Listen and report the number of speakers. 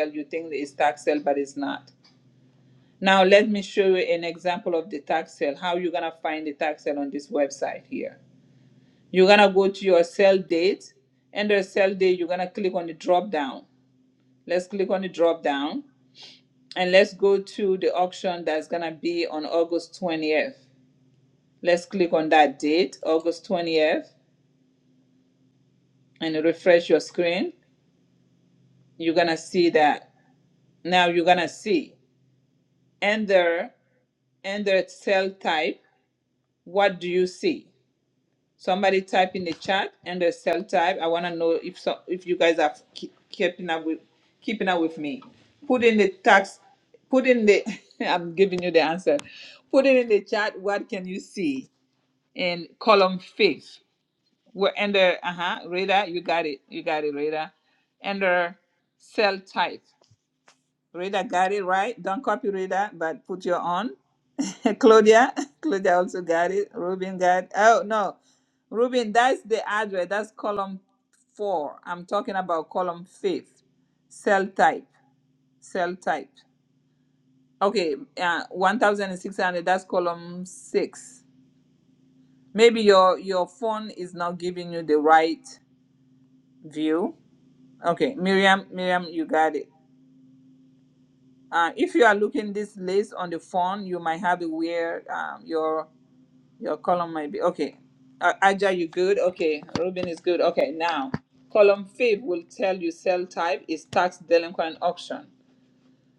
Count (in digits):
1